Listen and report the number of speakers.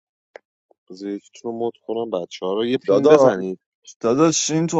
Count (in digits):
2